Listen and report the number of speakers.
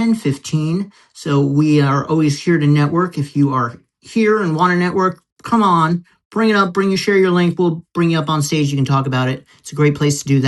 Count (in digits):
1